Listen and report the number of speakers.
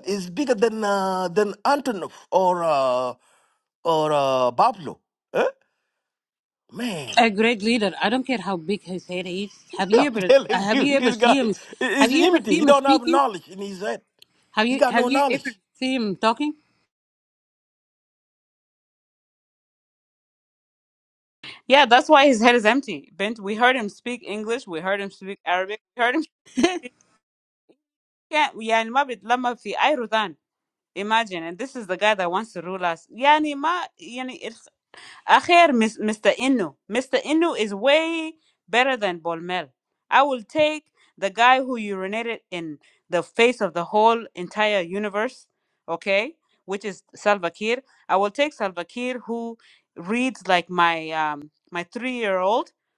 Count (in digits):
3